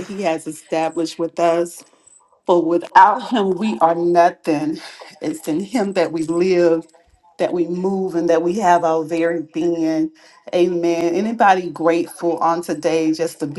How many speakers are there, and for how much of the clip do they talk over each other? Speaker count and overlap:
one, no overlap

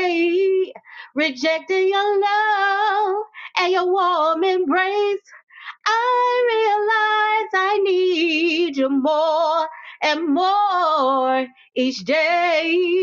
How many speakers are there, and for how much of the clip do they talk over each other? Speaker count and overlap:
one, no overlap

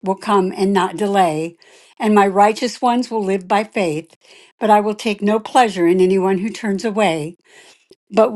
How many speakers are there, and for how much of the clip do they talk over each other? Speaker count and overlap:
one, no overlap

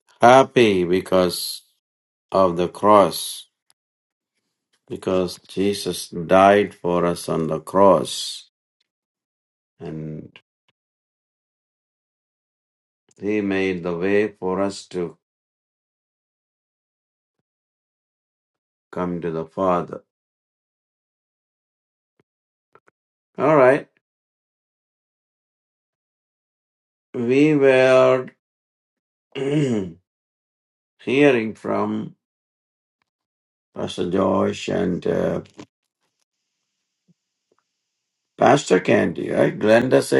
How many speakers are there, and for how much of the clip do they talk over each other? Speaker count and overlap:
one, no overlap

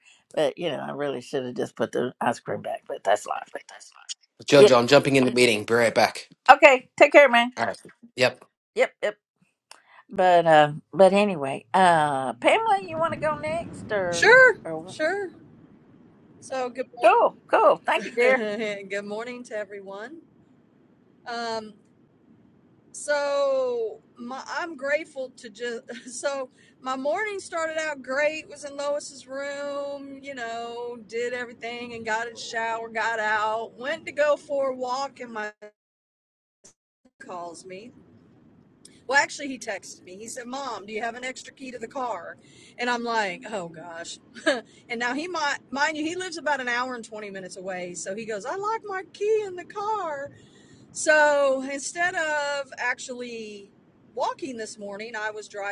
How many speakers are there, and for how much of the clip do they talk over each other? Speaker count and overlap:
three, about 2%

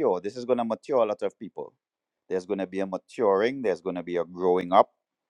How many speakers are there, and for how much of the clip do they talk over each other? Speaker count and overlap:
one, no overlap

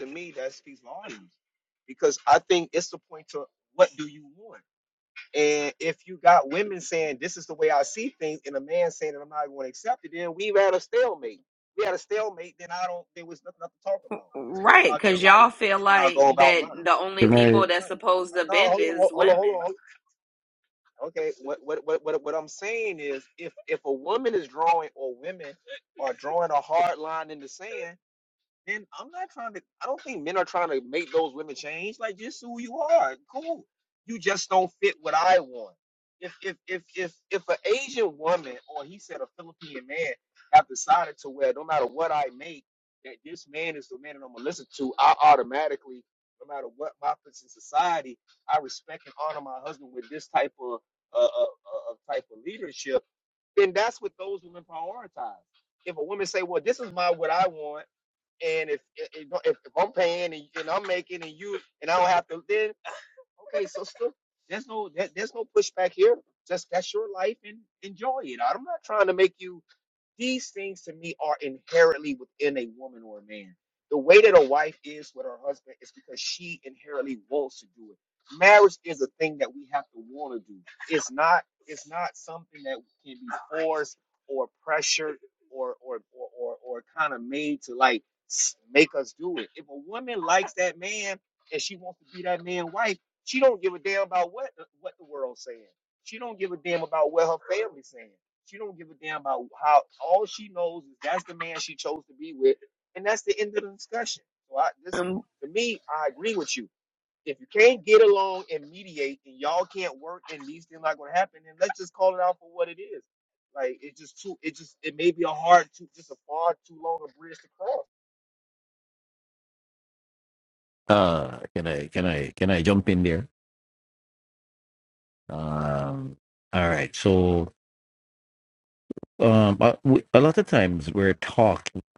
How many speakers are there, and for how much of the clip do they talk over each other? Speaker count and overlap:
three, about 3%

